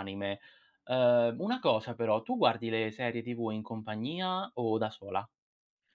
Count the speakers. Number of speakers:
1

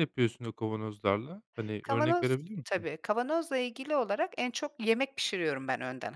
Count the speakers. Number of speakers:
2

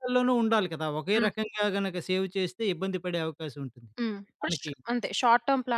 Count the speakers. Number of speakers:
2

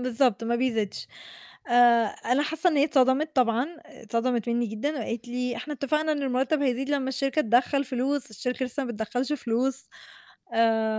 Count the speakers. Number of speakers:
1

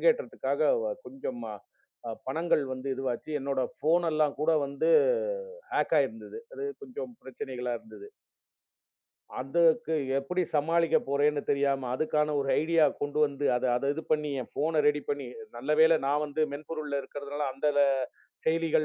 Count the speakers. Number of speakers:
1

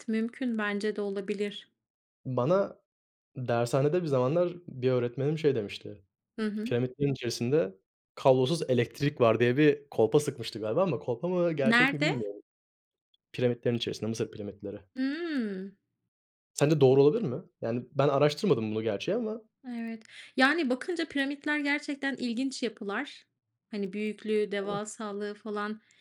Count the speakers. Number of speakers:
2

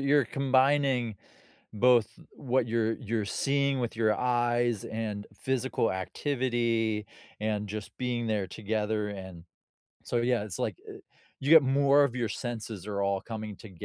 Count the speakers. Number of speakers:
1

